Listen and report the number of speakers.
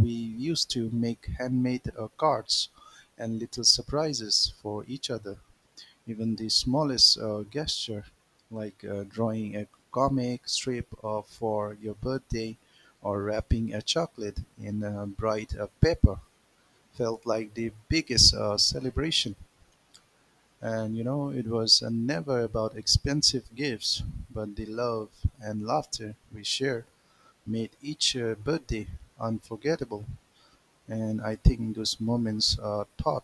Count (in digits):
1